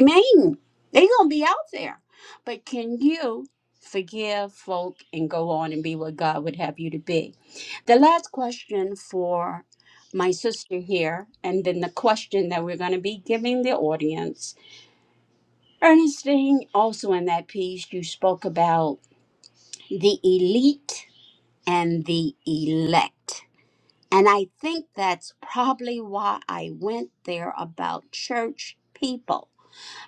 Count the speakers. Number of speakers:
1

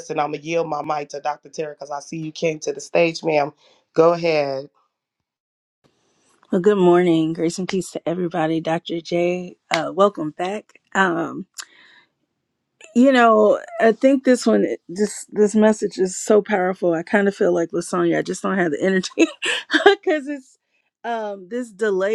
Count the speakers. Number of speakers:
2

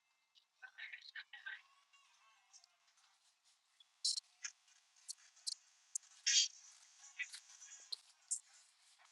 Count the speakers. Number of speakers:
0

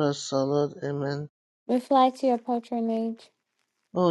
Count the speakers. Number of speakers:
2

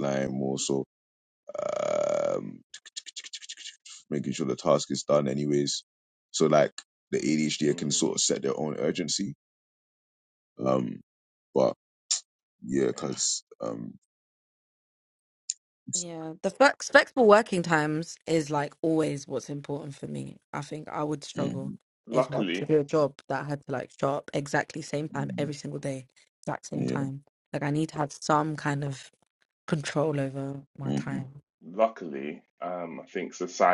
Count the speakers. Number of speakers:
3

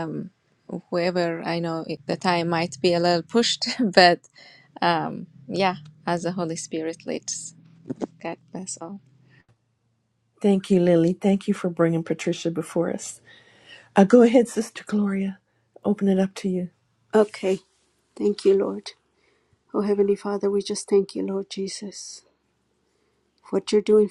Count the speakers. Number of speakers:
3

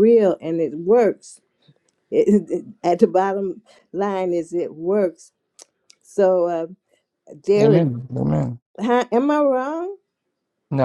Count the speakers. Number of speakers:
2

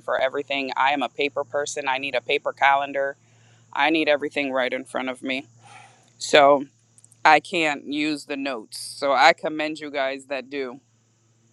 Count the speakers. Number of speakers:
1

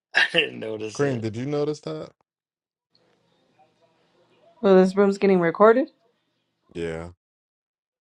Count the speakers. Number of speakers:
3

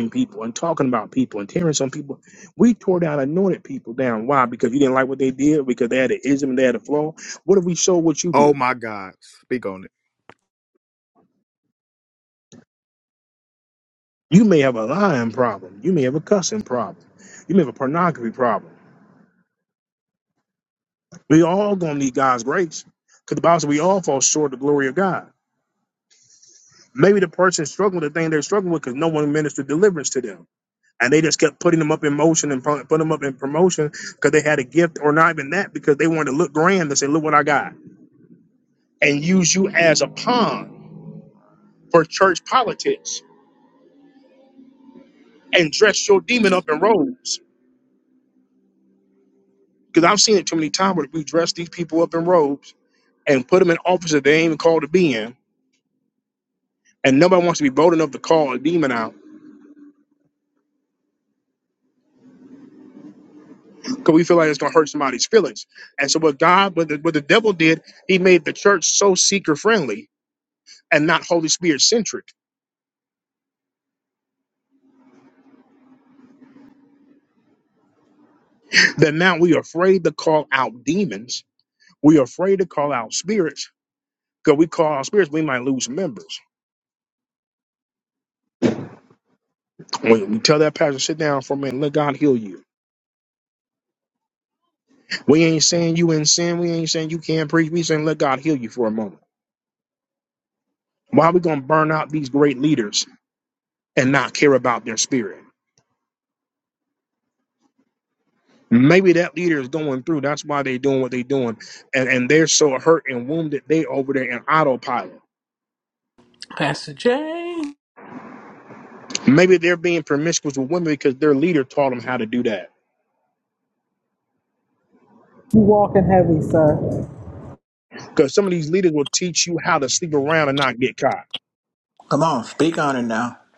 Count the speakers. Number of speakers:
5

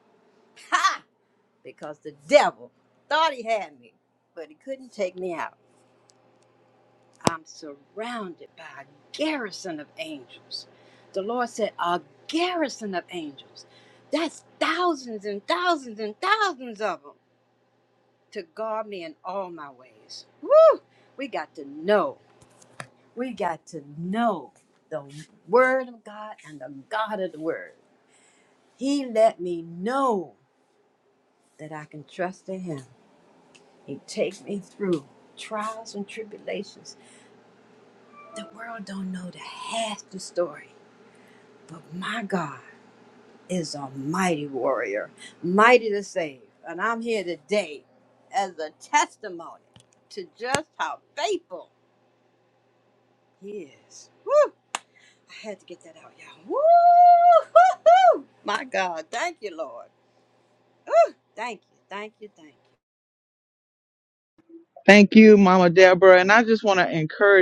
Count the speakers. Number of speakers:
2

